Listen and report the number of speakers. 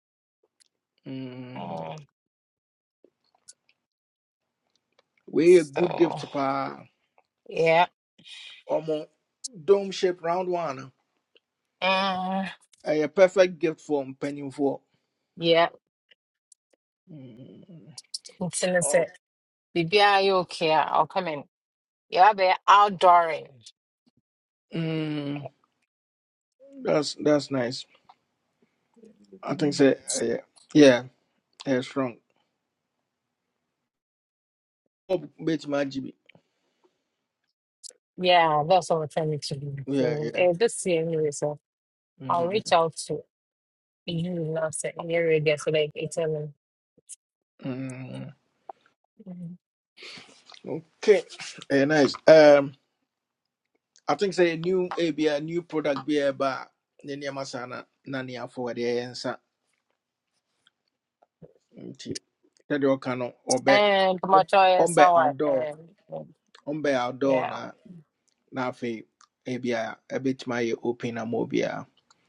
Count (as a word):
two